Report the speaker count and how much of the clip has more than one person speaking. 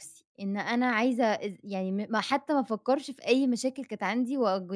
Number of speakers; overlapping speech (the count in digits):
1, no overlap